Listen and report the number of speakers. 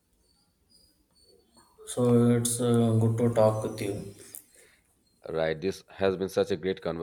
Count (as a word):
two